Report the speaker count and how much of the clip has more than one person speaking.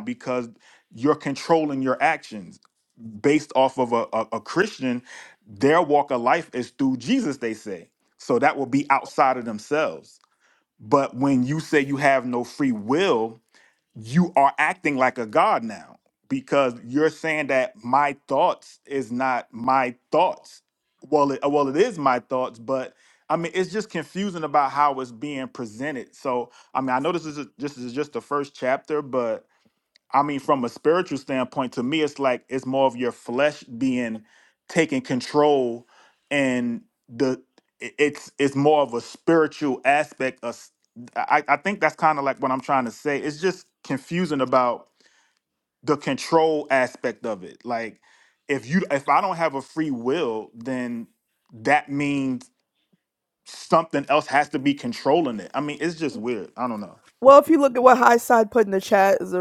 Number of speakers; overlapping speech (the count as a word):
two, no overlap